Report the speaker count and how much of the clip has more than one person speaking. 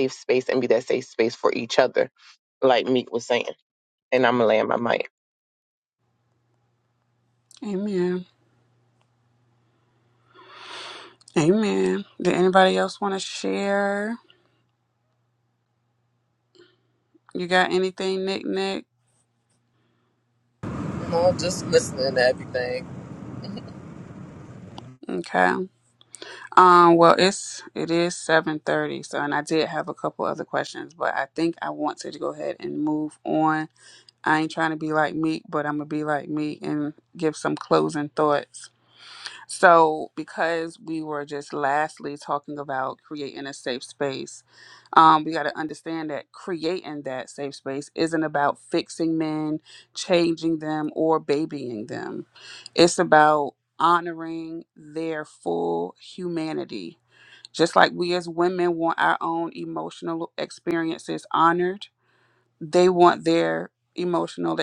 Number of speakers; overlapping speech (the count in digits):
3, no overlap